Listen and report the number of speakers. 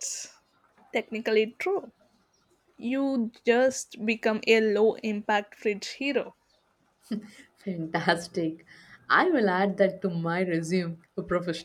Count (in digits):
2